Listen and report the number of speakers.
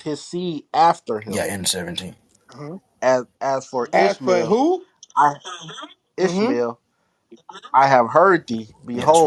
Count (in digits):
3